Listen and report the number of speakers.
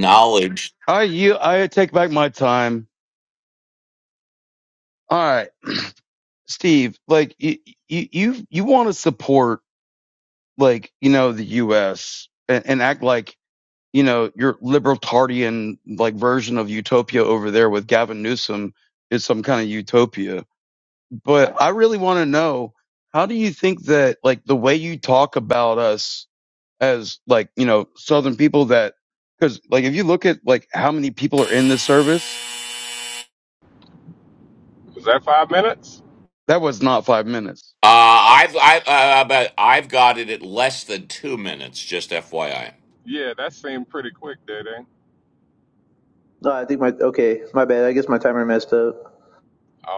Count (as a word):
four